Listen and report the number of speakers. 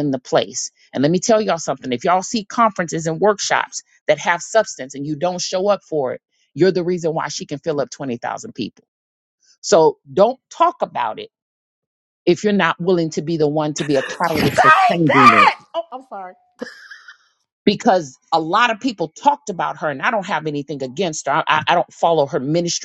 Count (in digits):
2